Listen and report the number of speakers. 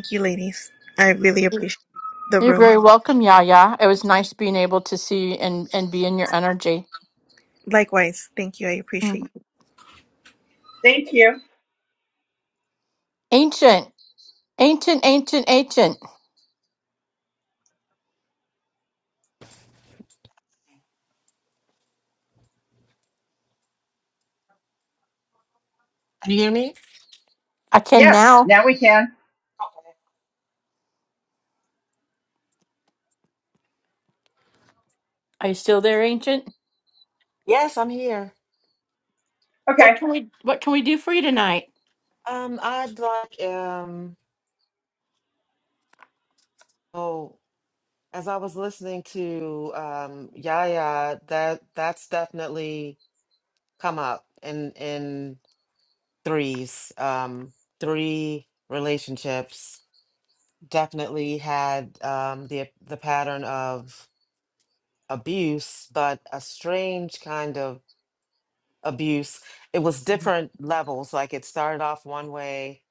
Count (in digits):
4